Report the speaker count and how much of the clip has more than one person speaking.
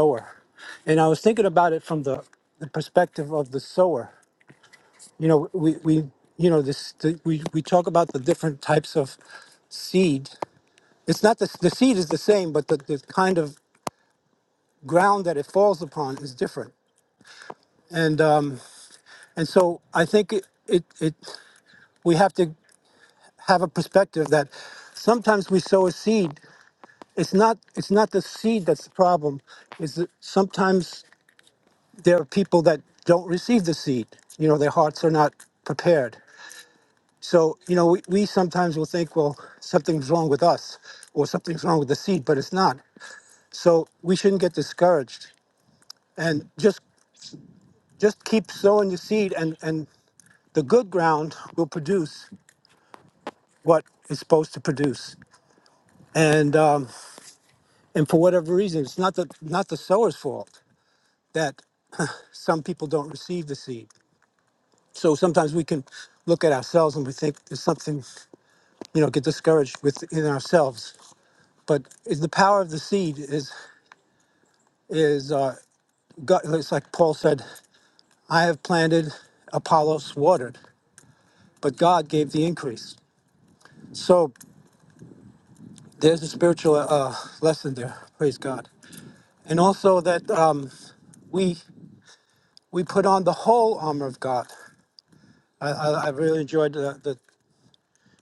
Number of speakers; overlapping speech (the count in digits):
1, no overlap